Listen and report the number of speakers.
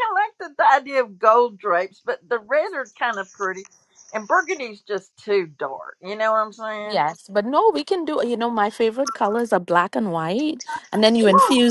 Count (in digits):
2